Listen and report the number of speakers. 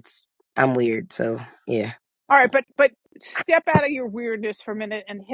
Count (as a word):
two